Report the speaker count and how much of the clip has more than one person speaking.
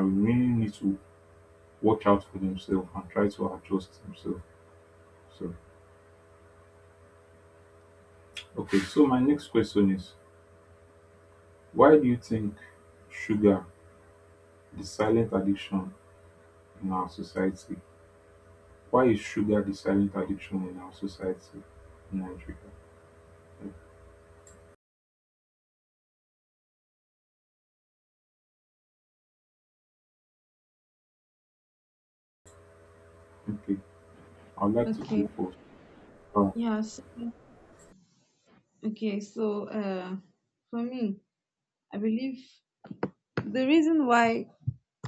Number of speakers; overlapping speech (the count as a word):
two, about 1%